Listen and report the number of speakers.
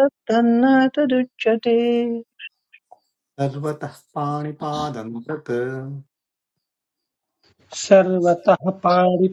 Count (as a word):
three